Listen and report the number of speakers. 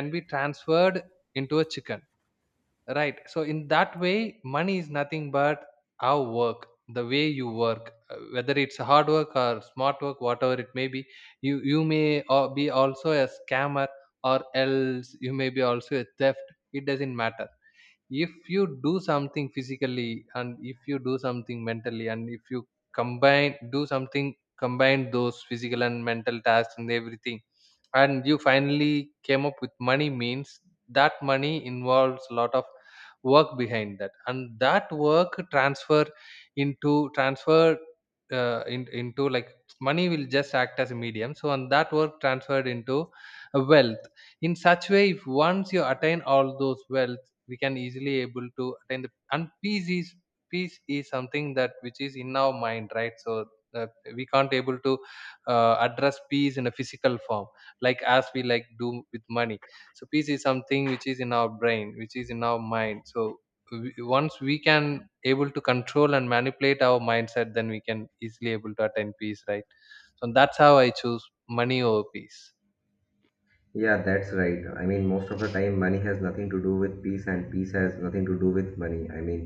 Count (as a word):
two